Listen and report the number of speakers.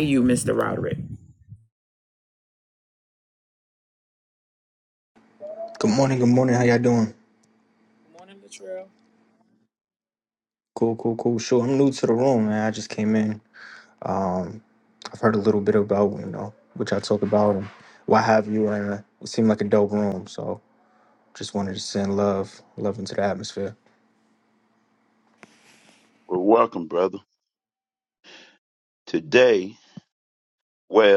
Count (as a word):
three